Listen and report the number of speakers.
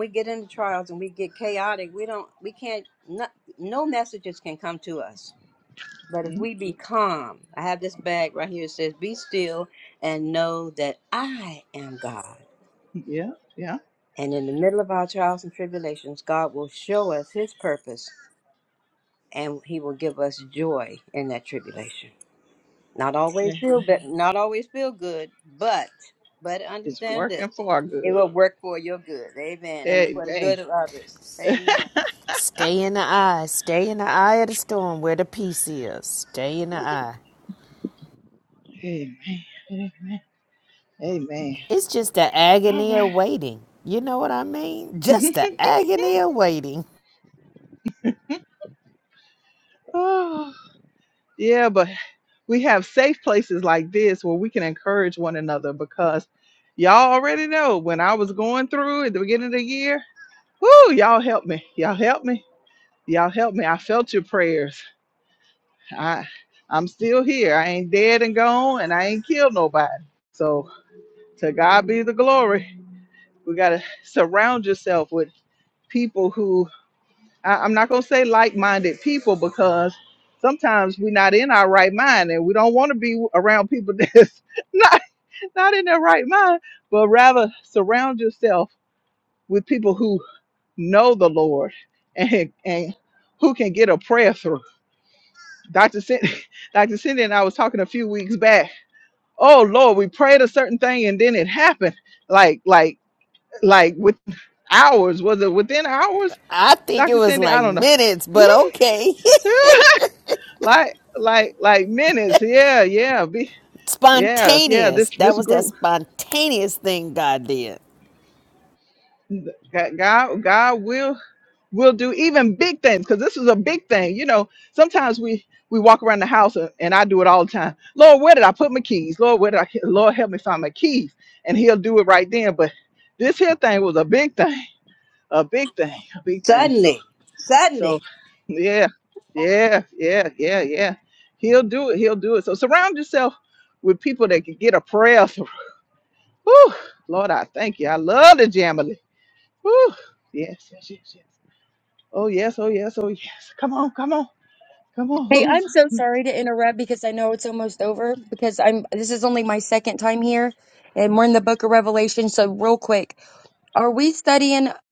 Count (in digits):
4